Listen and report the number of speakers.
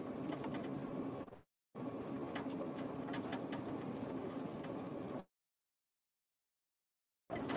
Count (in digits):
0